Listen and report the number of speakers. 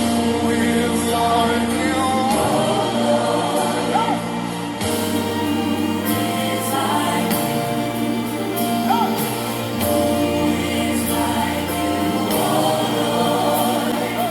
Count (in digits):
0